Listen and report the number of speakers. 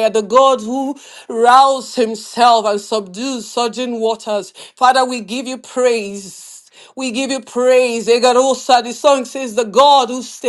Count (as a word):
one